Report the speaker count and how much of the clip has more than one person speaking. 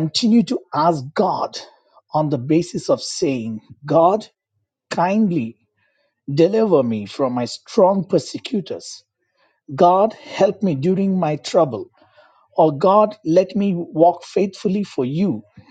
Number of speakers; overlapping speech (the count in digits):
1, no overlap